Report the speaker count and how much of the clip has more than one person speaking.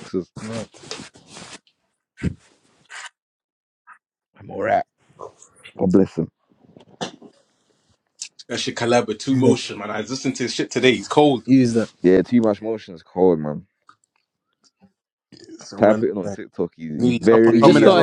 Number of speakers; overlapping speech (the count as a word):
three, about 10%